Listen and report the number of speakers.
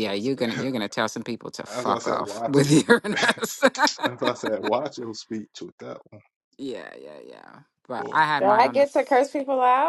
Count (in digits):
3